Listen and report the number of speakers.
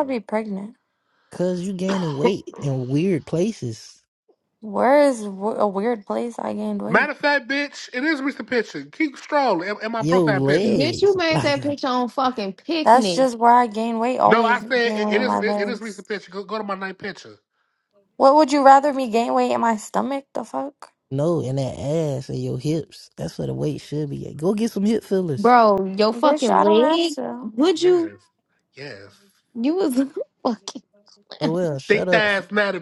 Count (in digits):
4